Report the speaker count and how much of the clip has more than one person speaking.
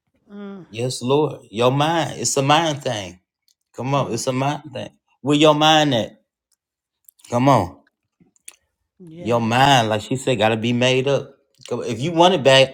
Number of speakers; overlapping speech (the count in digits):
2, about 4%